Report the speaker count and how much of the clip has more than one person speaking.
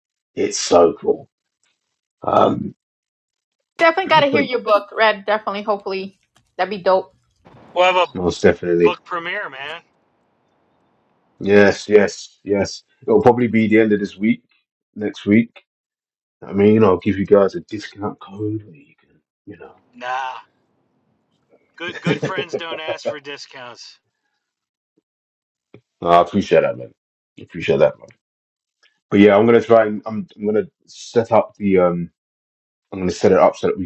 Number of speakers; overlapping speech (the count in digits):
3, about 2%